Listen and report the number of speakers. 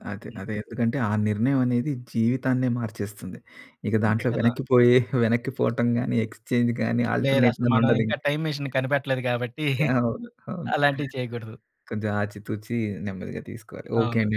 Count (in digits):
2